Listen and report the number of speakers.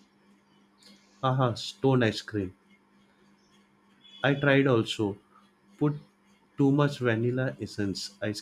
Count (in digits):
1